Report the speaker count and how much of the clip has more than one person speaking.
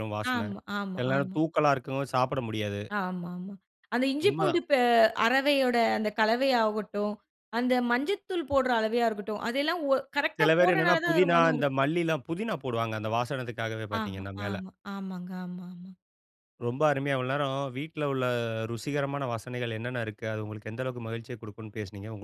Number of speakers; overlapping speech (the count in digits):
2, about 13%